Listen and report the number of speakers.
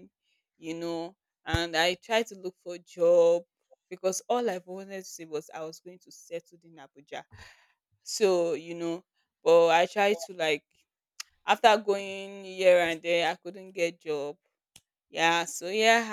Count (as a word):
one